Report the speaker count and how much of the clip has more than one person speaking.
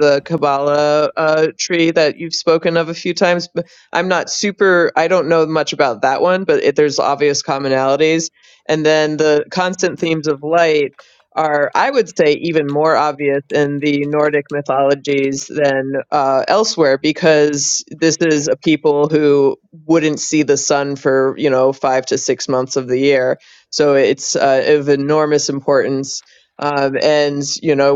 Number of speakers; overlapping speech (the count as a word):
one, no overlap